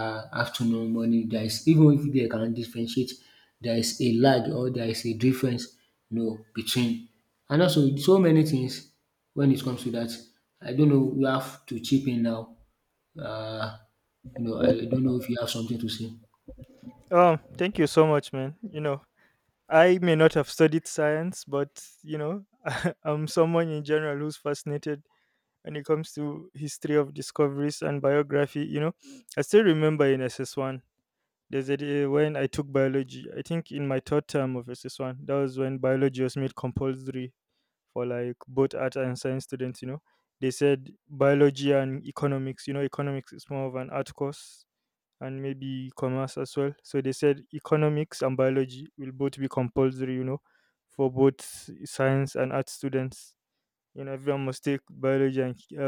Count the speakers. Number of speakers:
2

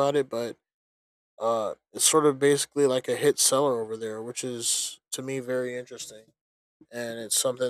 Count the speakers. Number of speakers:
1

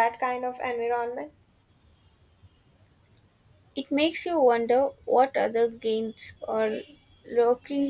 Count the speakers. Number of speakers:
2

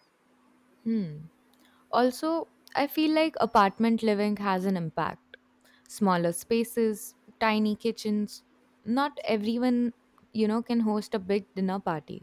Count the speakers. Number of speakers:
1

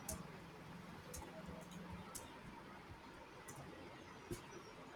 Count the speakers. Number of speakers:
0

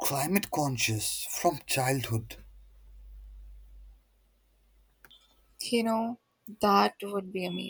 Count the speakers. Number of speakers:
2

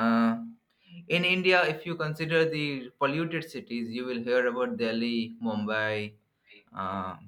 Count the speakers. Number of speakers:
1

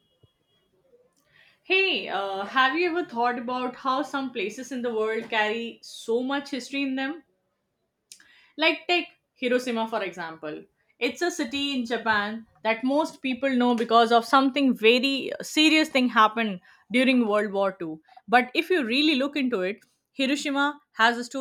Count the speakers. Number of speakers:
1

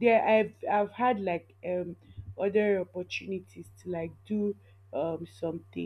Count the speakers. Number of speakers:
1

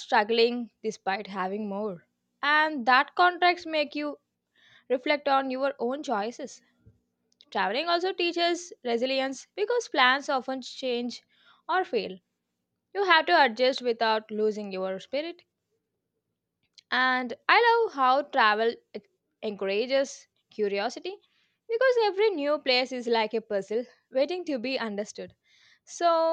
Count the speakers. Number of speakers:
1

